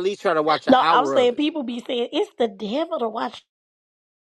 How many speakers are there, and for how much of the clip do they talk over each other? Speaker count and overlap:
two, about 16%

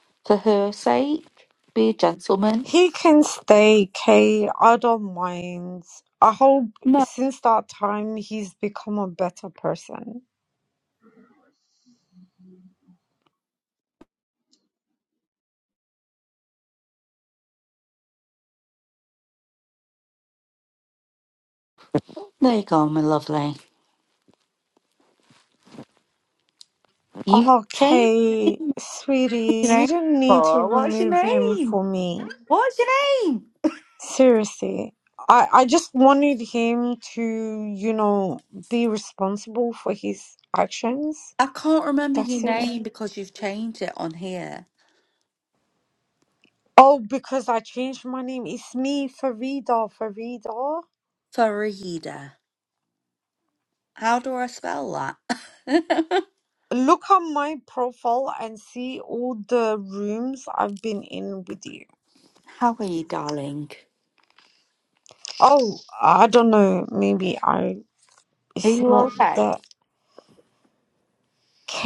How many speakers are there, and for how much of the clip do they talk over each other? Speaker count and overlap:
two, about 6%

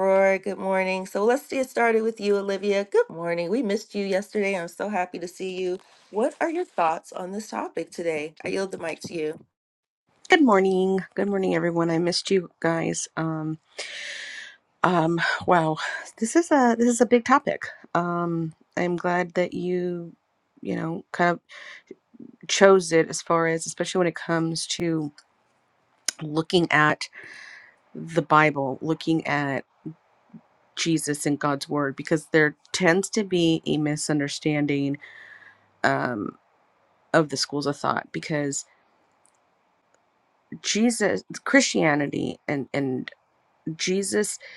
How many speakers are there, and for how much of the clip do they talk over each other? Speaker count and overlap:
two, no overlap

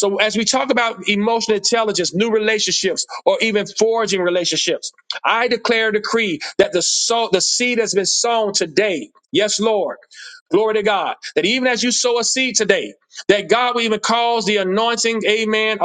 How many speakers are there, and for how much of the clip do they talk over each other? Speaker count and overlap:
one, no overlap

